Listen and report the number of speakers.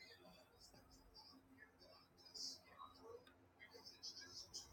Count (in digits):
0